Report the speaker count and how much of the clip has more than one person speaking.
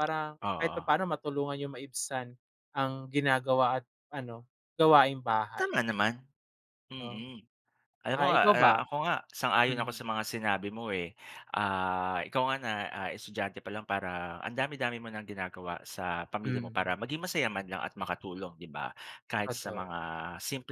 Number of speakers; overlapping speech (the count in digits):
2, about 11%